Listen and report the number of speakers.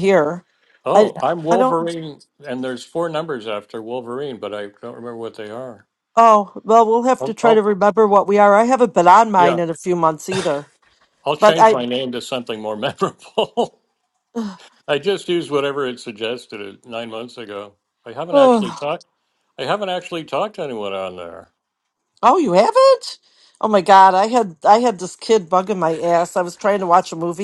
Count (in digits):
2